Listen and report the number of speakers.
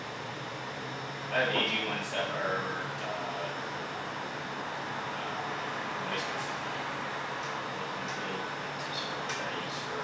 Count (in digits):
1